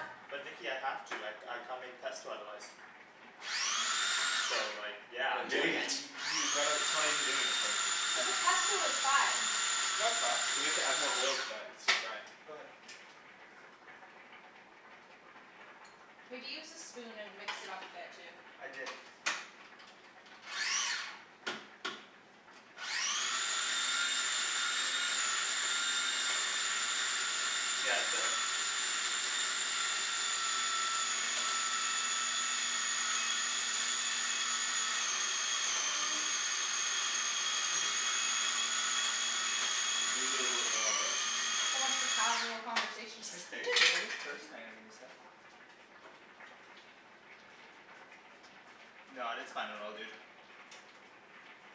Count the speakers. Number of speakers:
three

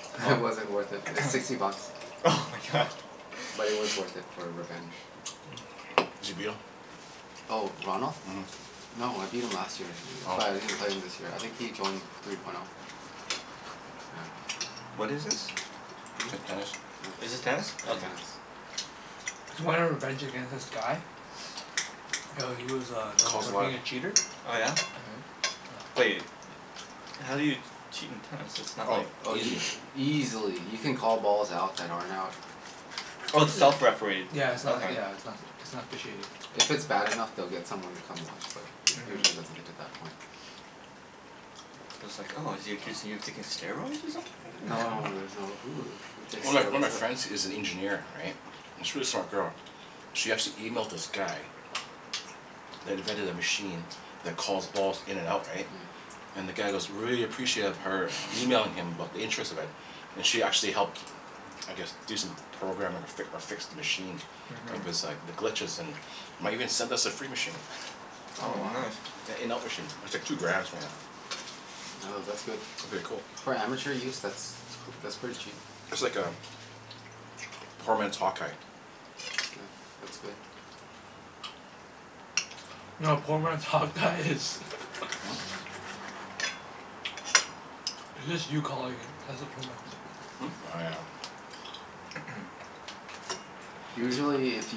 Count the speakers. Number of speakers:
four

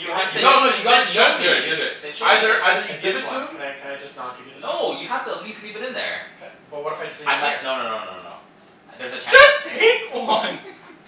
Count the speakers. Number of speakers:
four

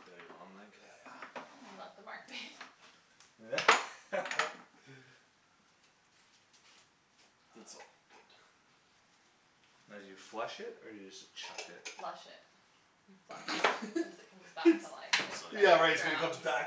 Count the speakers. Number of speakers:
three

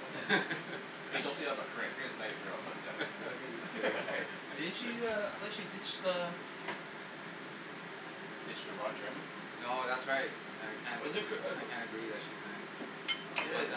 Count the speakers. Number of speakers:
three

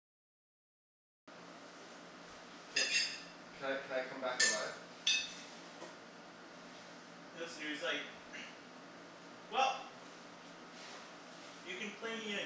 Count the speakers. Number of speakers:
two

